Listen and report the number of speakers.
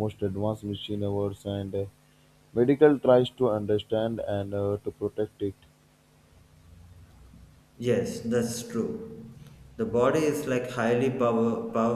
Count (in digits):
2